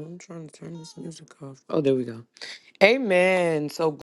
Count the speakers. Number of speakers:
1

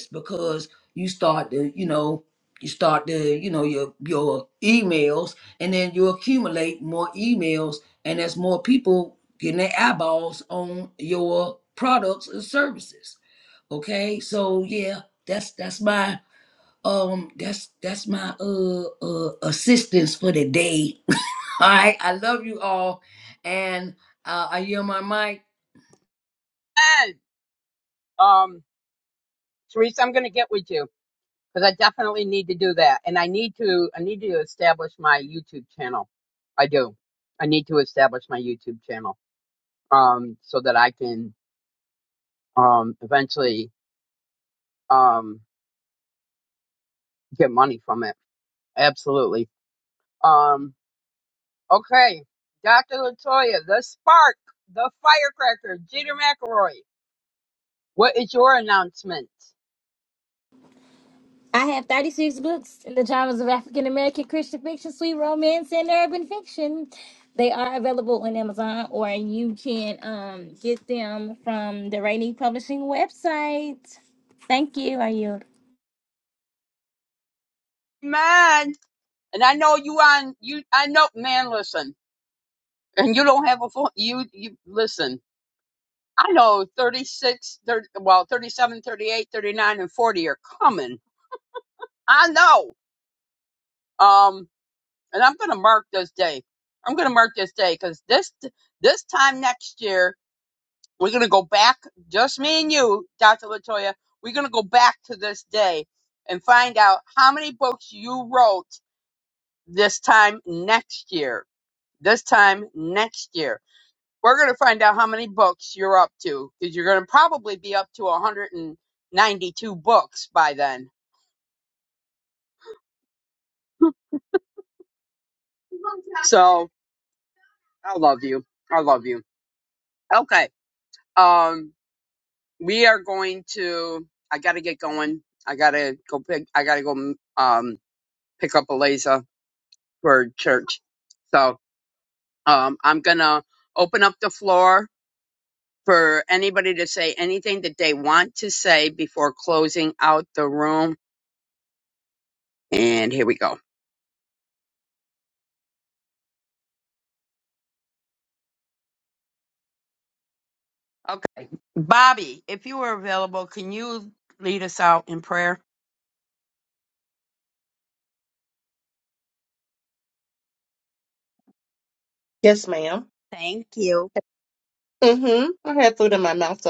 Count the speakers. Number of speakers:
4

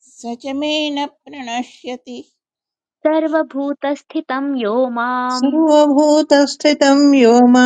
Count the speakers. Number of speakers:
3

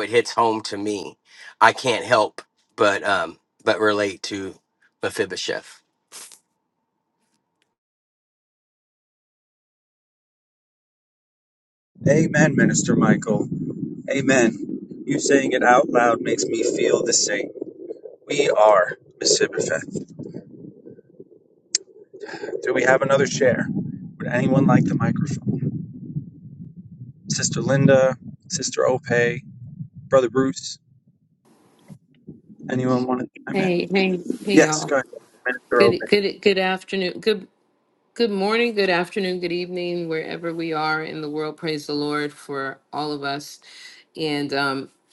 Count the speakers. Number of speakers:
3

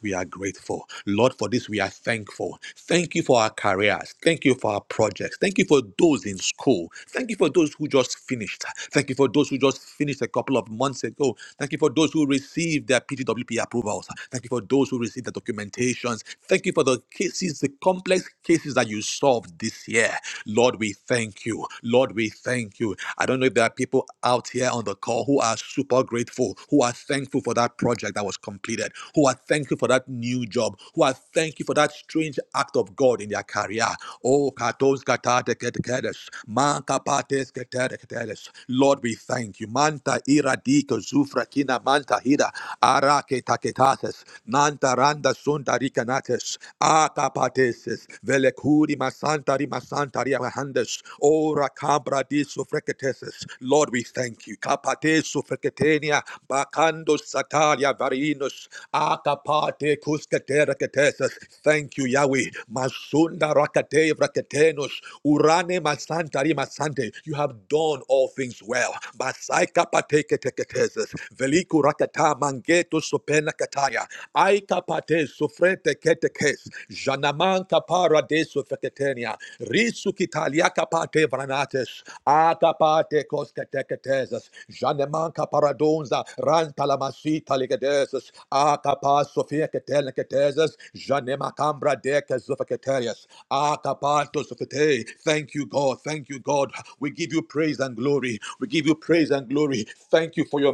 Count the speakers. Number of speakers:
1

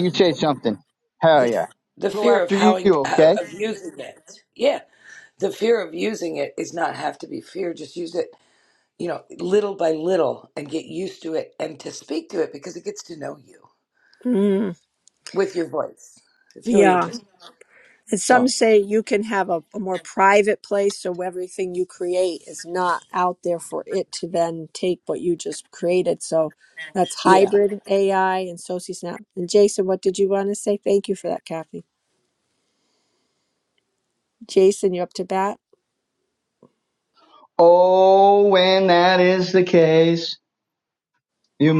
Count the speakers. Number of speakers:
3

